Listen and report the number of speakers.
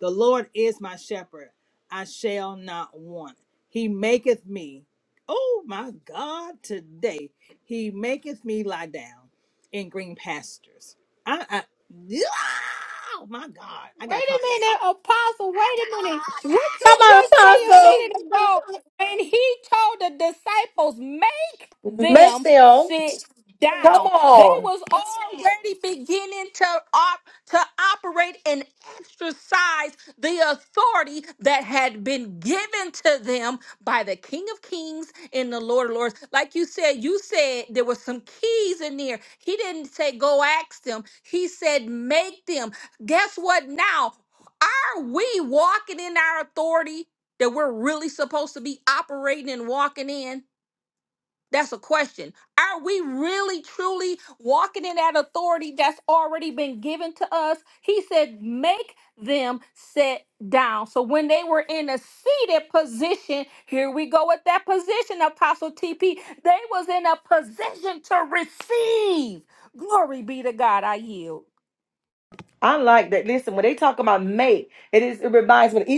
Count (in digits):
3